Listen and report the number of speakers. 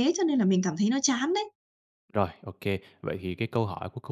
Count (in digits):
2